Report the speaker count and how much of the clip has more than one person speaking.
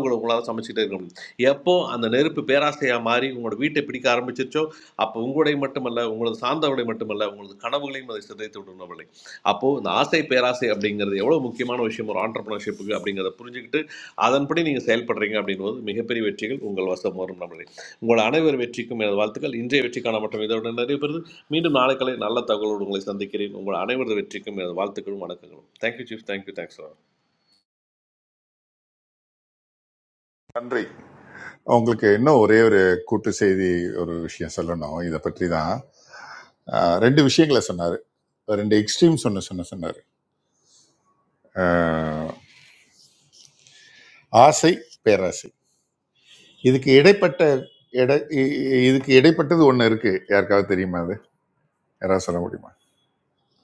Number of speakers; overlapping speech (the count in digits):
2, no overlap